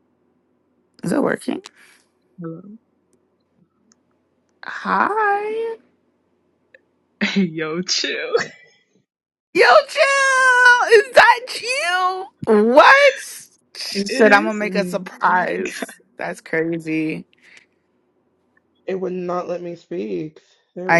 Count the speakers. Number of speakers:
3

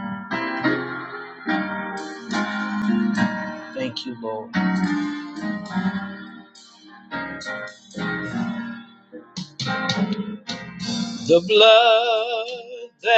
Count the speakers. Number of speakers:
1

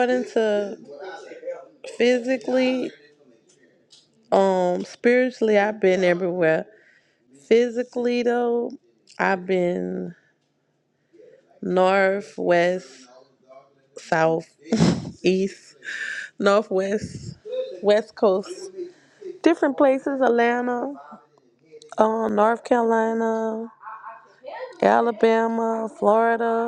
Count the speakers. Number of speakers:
1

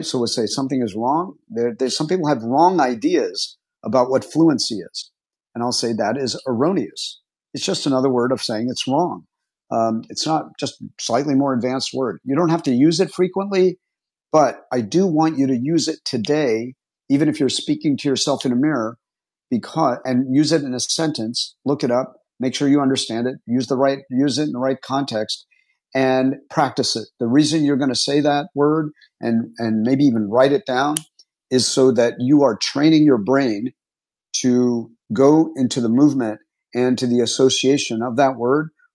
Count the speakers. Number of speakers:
1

